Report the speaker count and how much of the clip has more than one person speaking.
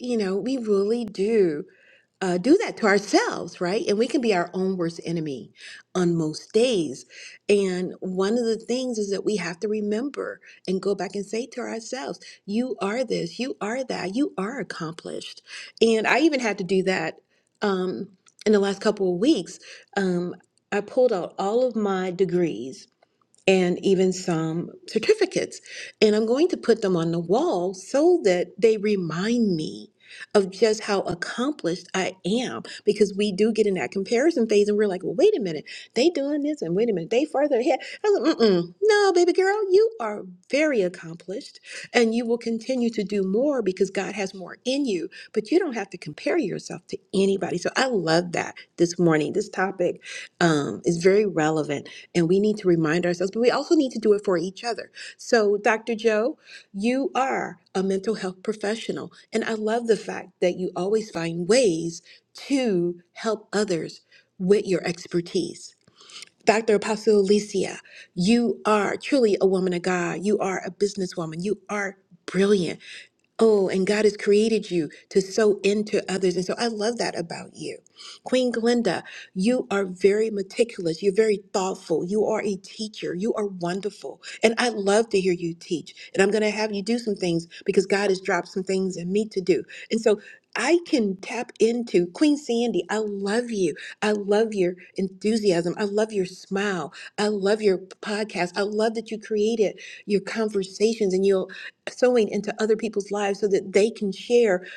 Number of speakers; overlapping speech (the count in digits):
1, no overlap